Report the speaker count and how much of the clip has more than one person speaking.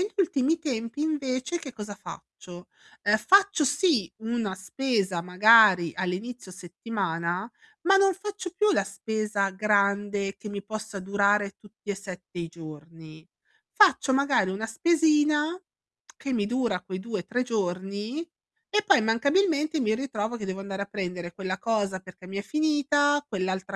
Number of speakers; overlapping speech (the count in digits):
1, no overlap